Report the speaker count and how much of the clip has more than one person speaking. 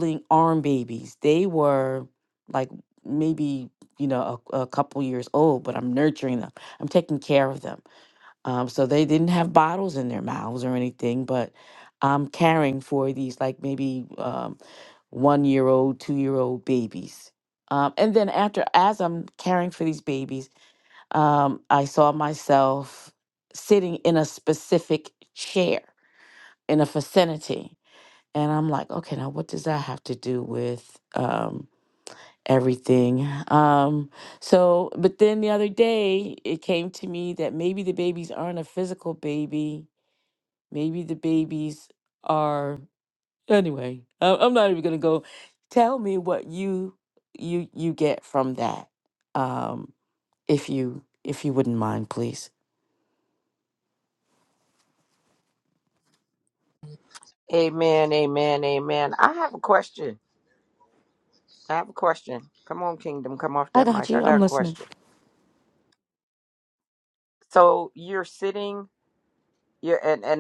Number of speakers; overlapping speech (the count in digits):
2, about 2%